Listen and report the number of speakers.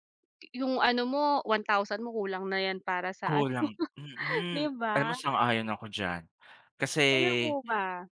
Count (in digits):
2